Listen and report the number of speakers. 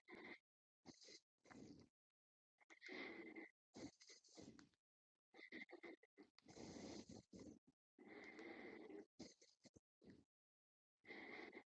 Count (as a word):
zero